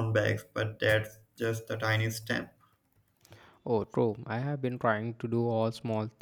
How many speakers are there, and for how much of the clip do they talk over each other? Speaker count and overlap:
two, no overlap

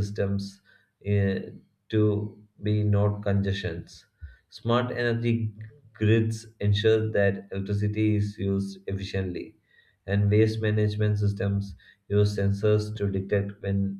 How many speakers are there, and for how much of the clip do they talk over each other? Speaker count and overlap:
one, no overlap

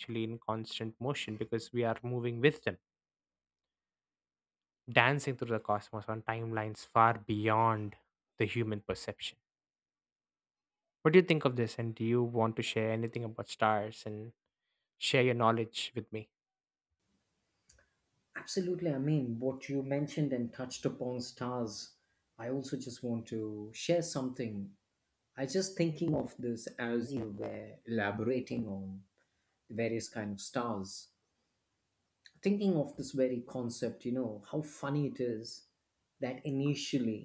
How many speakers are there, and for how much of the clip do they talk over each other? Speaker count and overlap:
two, no overlap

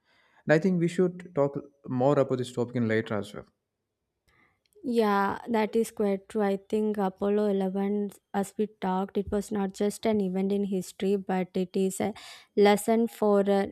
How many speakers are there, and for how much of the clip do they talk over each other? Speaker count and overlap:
two, no overlap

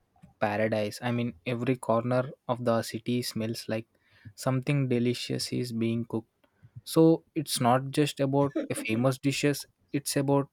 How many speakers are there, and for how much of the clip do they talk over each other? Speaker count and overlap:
one, no overlap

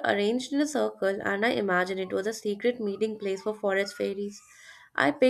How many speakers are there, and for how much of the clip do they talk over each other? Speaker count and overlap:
one, no overlap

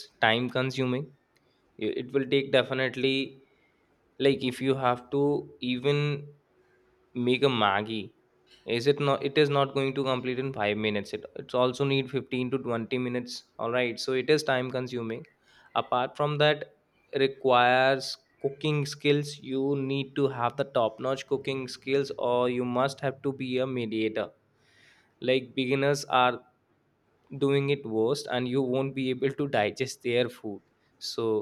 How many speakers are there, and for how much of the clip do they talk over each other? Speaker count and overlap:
one, no overlap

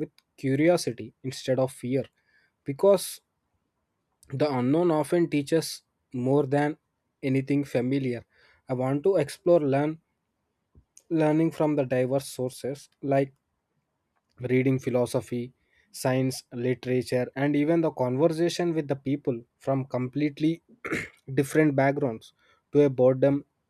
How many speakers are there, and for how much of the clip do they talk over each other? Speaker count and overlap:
one, no overlap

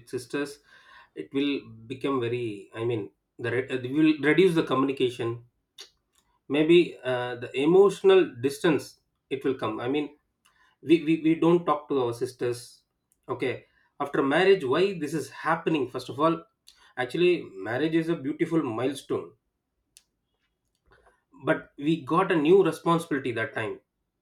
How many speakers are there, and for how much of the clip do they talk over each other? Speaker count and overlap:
one, no overlap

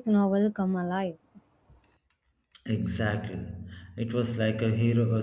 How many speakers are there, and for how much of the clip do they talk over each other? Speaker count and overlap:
two, no overlap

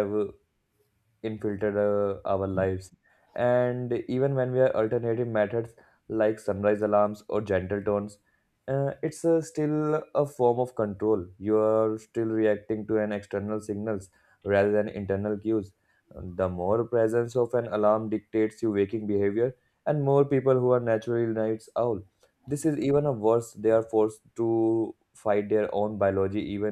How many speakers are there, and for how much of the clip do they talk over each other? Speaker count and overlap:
one, no overlap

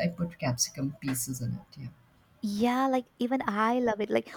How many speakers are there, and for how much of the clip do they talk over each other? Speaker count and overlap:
two, no overlap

